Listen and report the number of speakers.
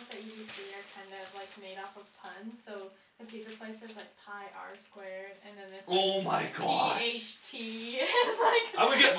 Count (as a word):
two